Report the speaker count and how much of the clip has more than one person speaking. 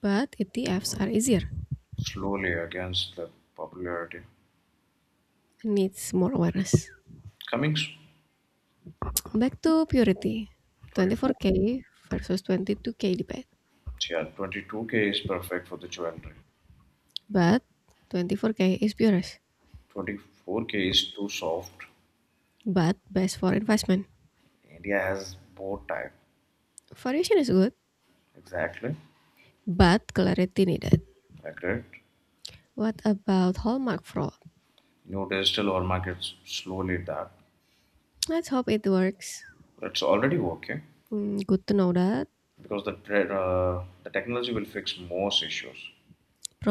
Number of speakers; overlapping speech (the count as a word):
two, about 1%